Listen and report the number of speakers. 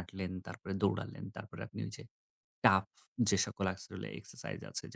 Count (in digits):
1